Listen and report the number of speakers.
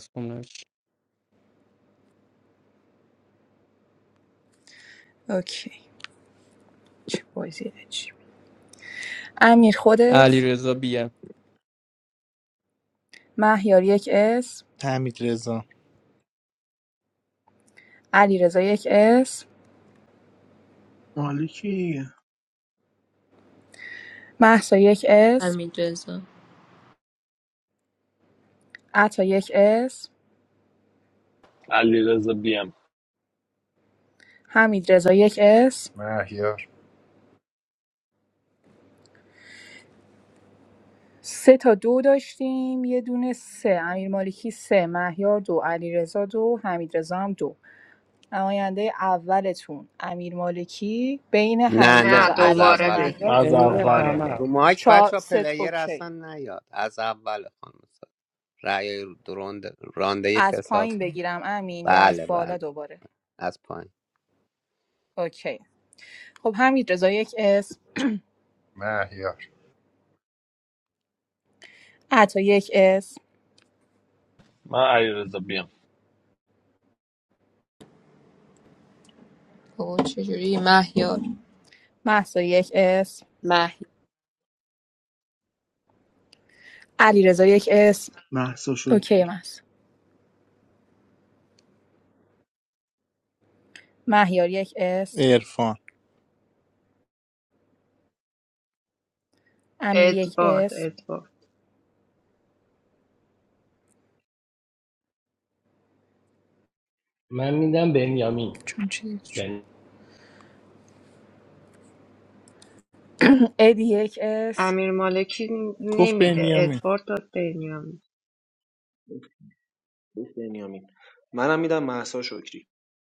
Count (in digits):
11